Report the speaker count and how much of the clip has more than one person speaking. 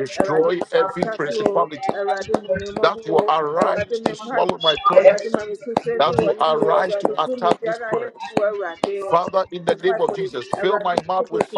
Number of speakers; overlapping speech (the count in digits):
2, about 70%